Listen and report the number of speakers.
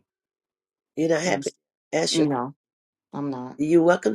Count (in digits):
2